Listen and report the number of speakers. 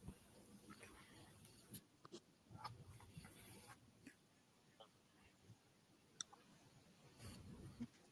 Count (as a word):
zero